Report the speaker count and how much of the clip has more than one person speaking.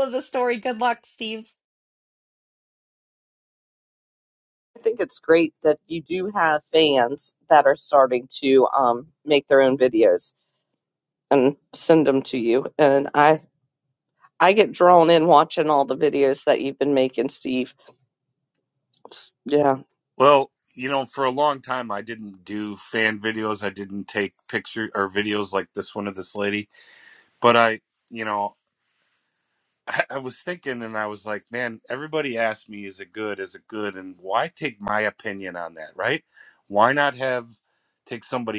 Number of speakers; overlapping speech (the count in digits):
3, no overlap